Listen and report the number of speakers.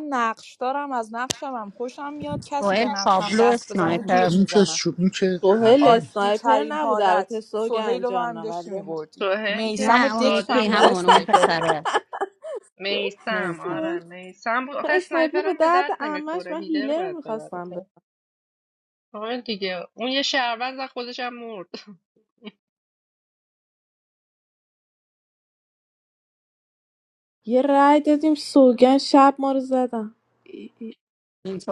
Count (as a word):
five